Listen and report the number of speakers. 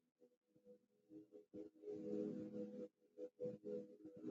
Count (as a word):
zero